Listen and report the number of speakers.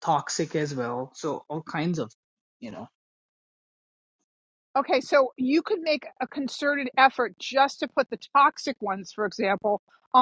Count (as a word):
two